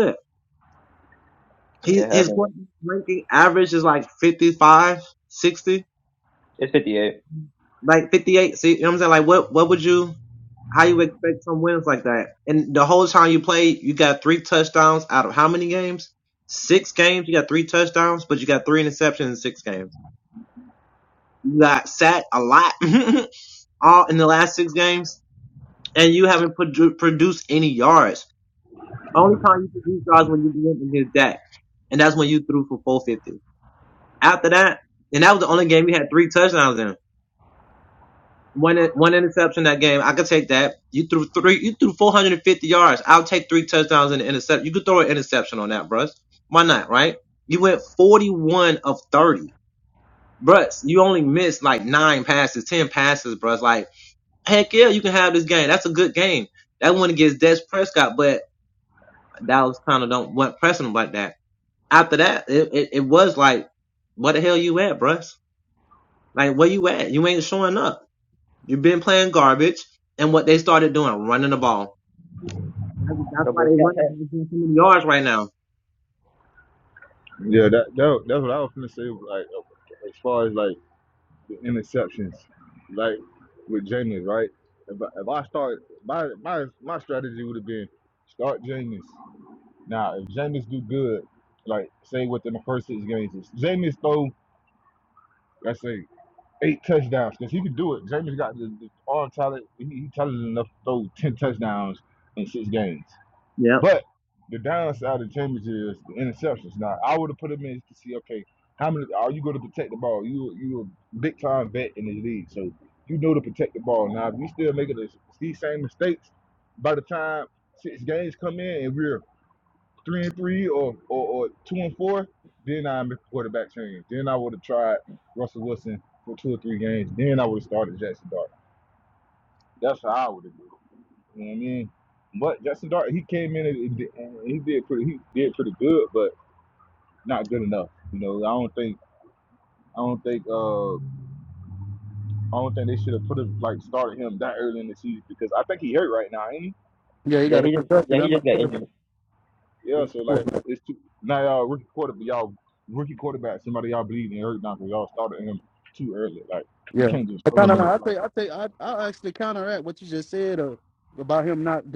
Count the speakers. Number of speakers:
4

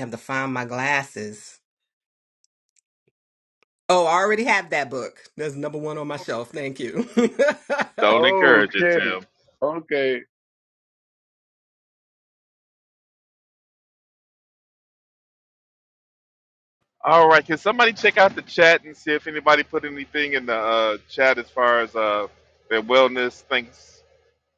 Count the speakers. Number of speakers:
3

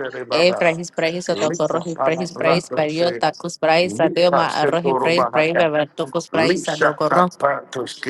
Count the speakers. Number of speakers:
2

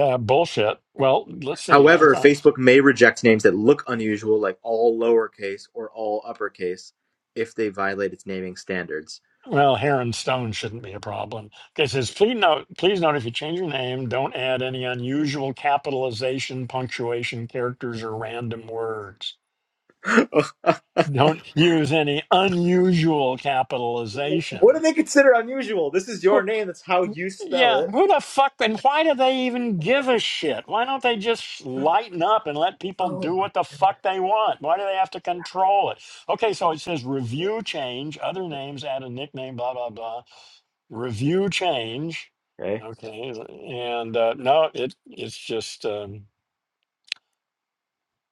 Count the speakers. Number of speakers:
2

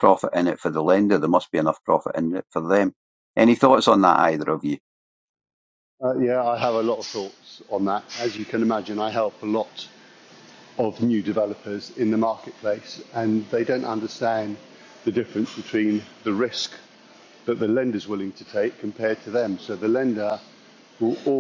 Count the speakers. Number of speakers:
2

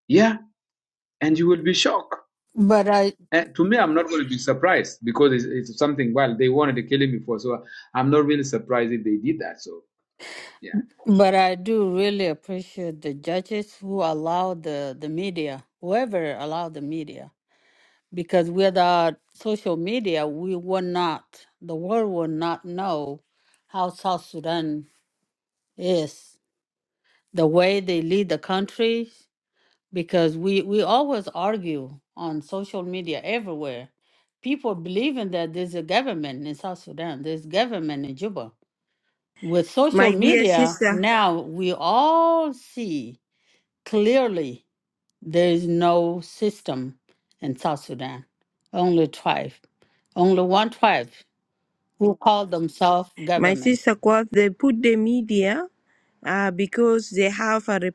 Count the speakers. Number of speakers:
3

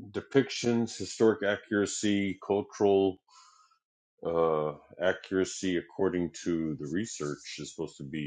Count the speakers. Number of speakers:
1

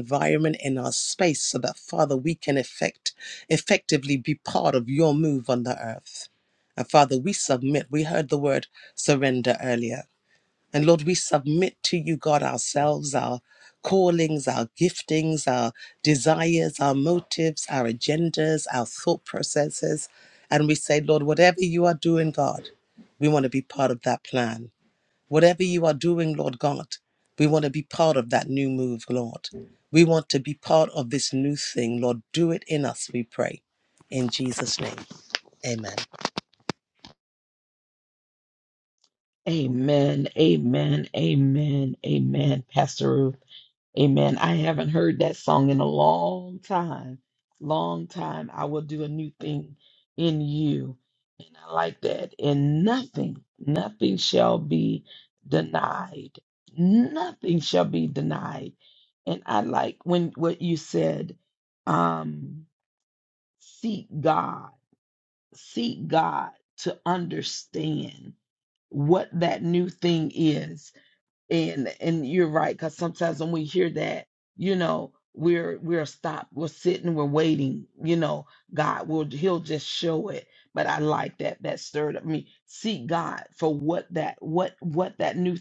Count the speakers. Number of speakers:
2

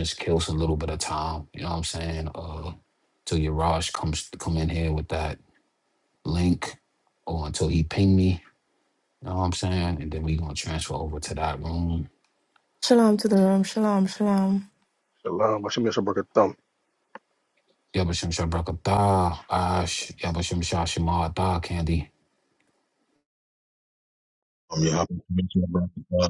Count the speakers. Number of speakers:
4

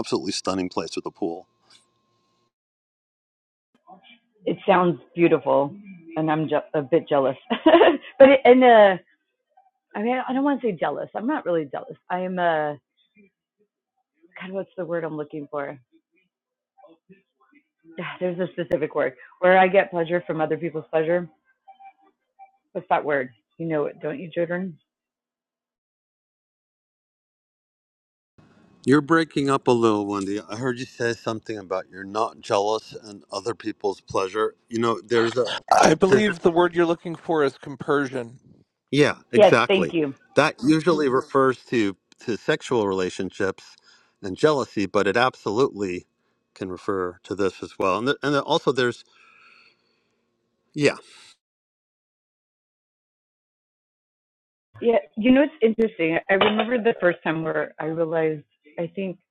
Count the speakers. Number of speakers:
3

